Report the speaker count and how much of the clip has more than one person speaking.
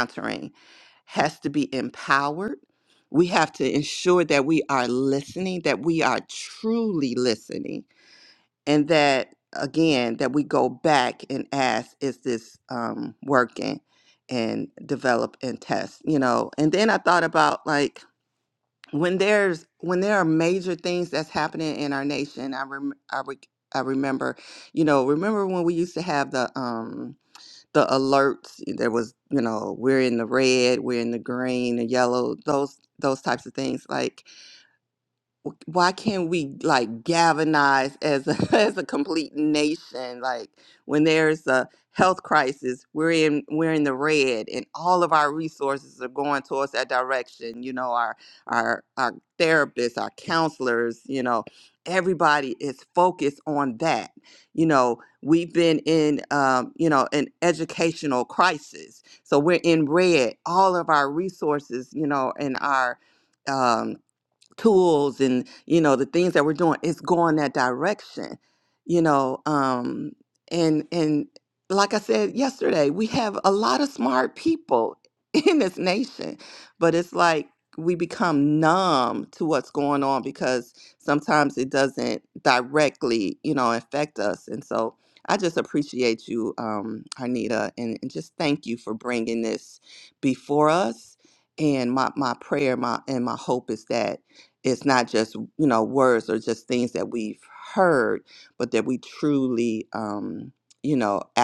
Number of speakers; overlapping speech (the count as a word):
one, no overlap